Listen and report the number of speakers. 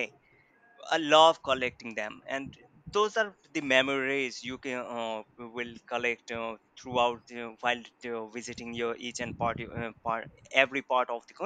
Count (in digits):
1